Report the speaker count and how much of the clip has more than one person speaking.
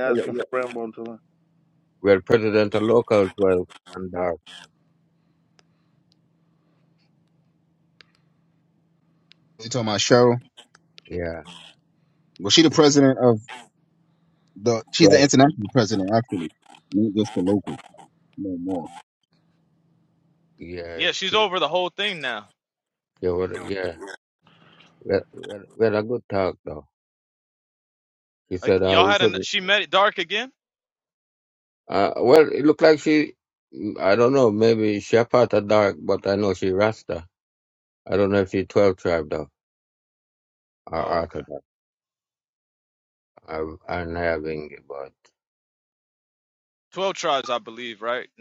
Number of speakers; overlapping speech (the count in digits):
4, about 5%